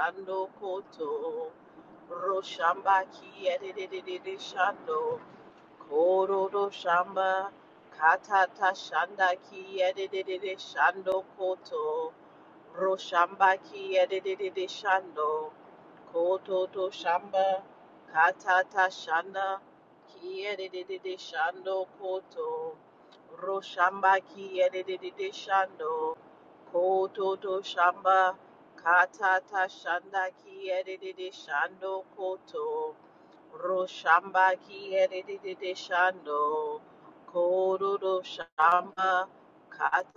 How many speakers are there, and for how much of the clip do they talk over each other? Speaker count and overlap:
one, no overlap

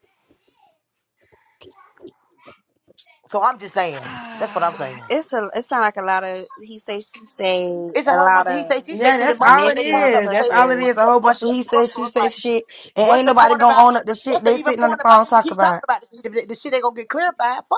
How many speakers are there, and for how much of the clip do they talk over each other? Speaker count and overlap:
three, about 36%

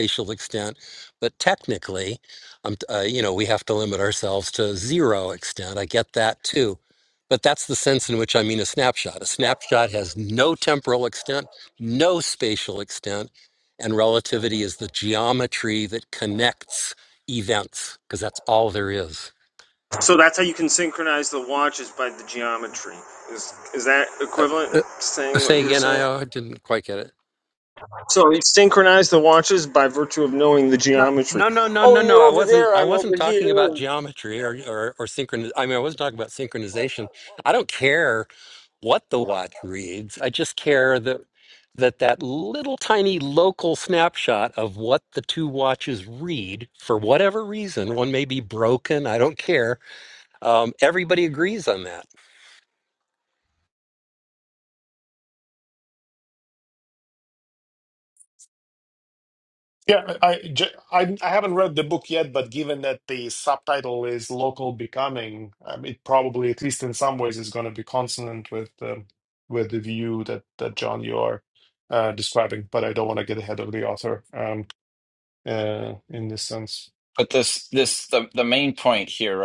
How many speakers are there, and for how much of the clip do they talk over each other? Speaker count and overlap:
four, about 4%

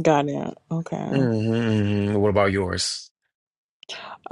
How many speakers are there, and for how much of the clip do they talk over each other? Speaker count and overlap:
two, about 4%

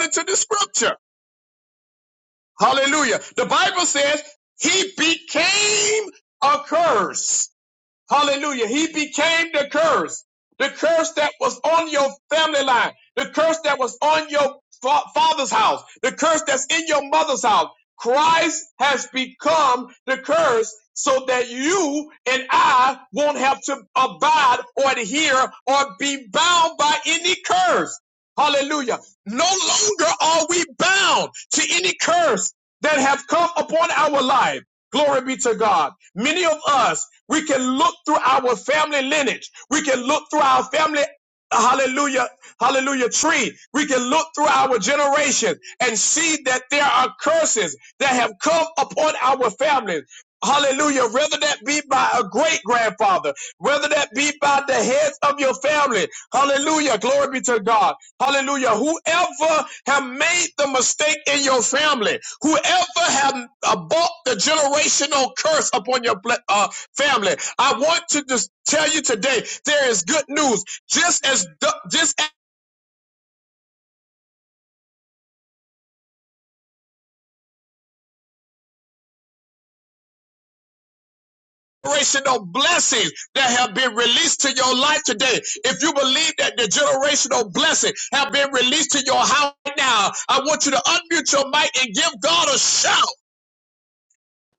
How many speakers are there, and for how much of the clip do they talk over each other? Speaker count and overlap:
one, no overlap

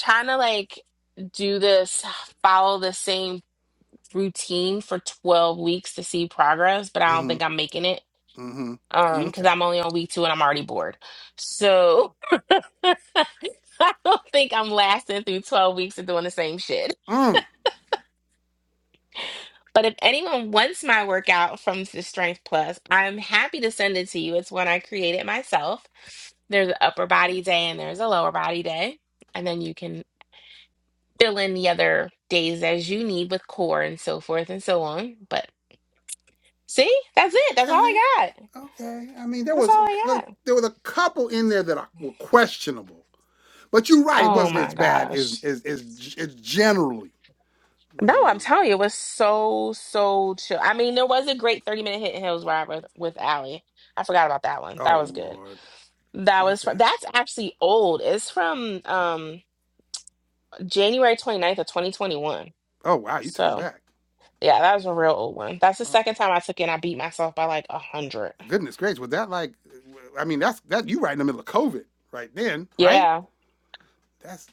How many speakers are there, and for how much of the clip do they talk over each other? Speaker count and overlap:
two, about 6%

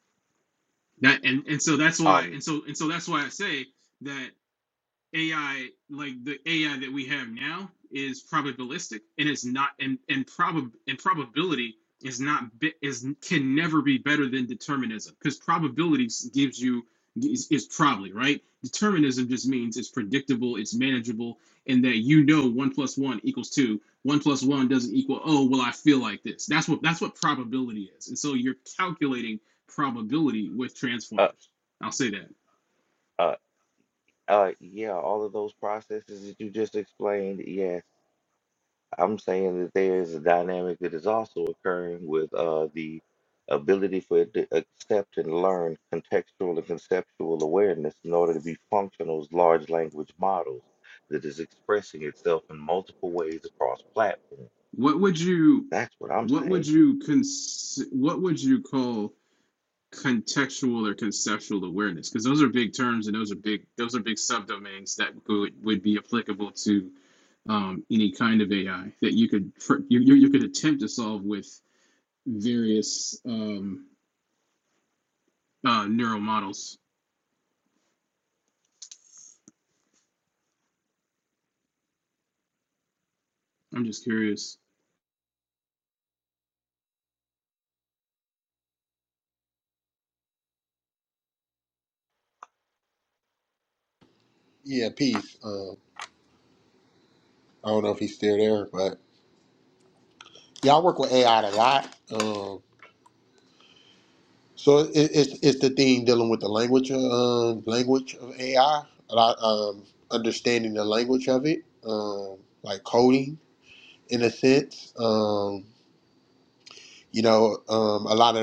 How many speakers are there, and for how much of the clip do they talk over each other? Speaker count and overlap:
three, about 1%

